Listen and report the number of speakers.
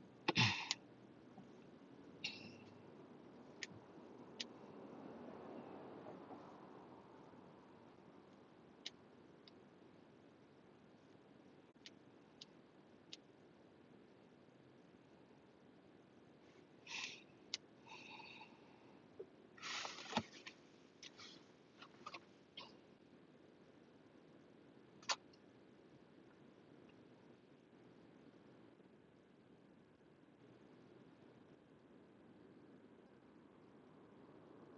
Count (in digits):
0